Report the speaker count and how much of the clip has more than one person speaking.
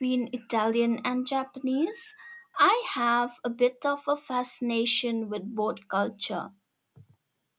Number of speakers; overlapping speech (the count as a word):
one, no overlap